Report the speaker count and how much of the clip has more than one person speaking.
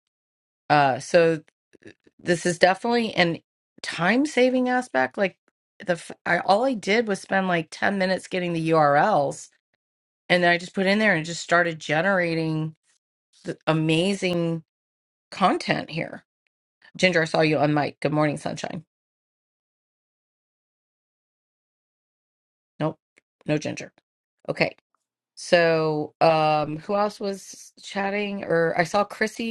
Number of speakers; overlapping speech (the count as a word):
one, no overlap